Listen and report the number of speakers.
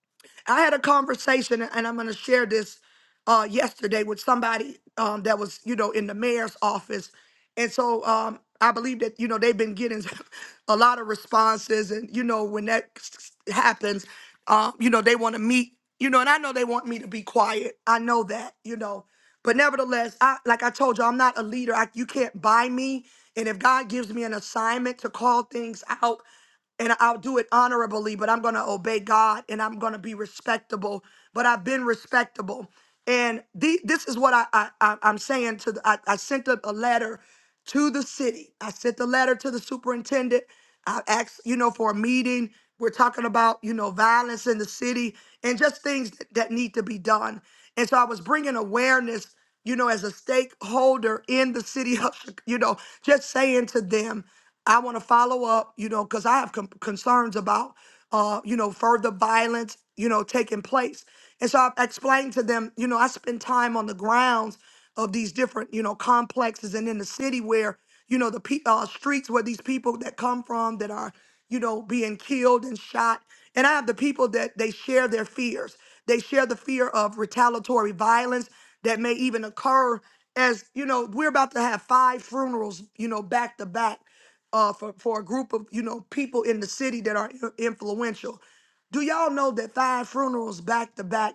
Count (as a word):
one